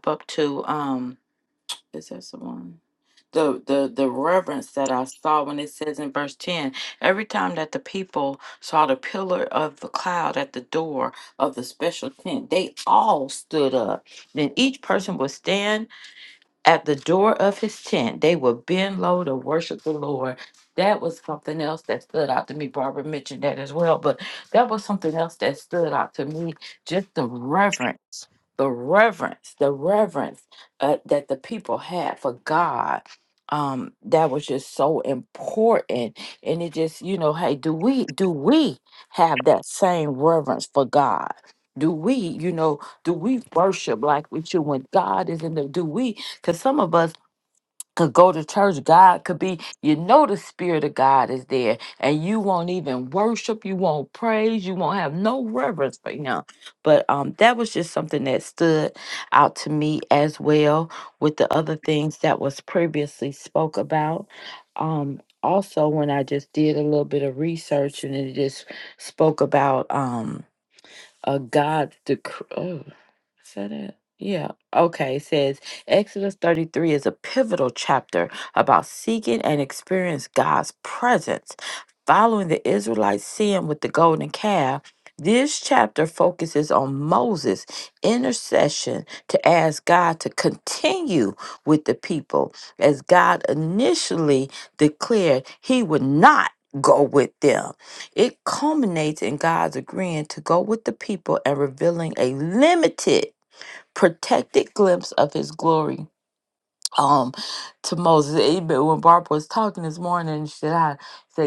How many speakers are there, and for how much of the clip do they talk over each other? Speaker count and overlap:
1, no overlap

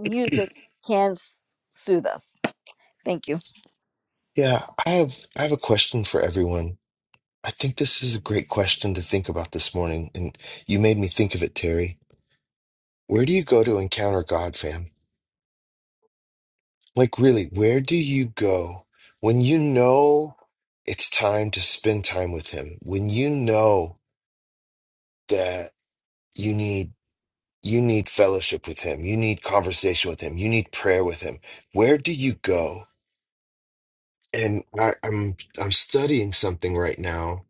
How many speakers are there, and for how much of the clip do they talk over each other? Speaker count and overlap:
2, no overlap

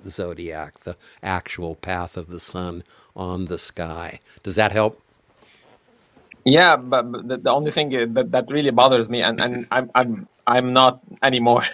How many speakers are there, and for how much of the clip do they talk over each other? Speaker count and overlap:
2, no overlap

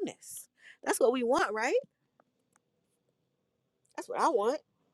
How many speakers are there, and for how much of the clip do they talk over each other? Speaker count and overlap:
1, no overlap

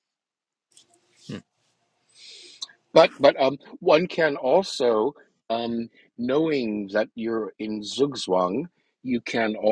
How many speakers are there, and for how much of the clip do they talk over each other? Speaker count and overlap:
1, no overlap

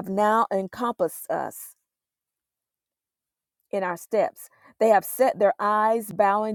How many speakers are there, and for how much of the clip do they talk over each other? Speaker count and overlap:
1, no overlap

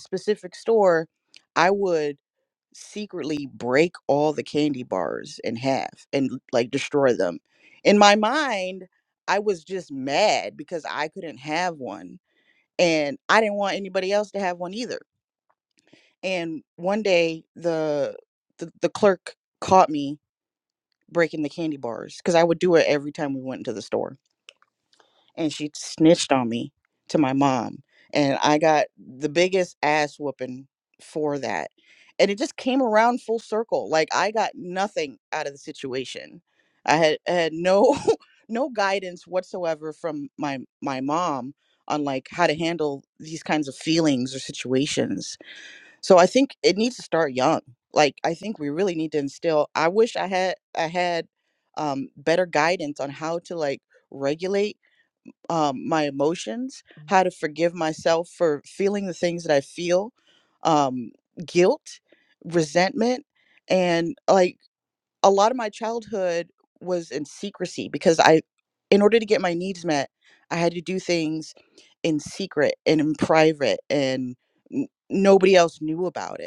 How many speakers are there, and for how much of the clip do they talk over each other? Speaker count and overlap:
1, no overlap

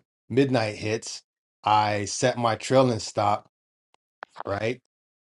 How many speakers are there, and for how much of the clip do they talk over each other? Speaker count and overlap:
1, no overlap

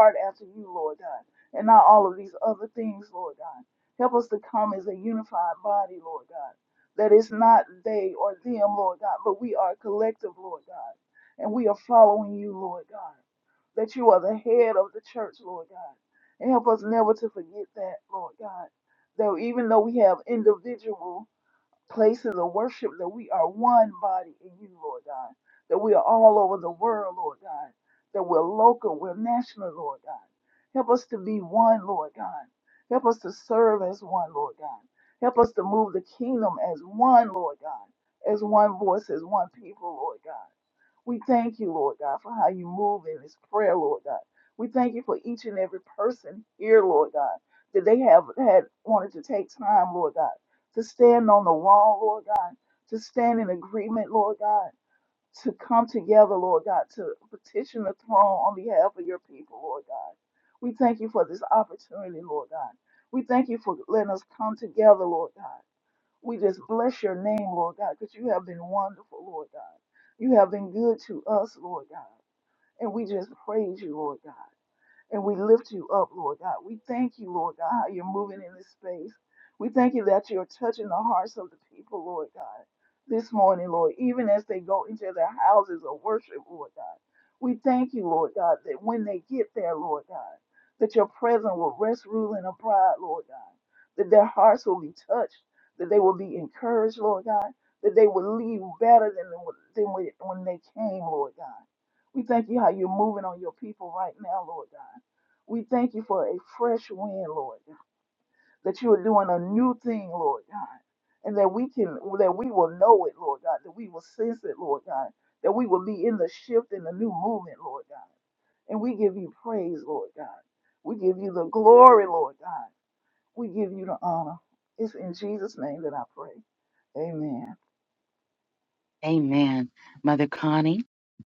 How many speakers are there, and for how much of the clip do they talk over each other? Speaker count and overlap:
2, no overlap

